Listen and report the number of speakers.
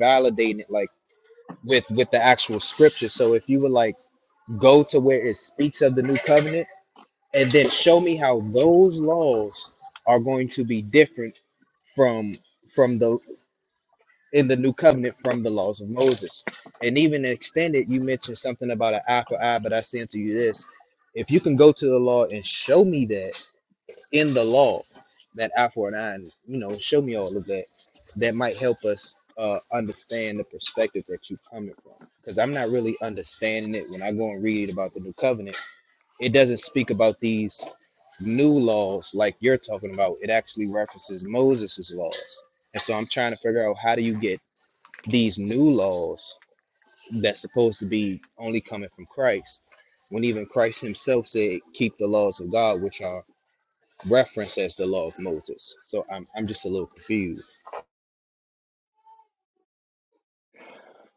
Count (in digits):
1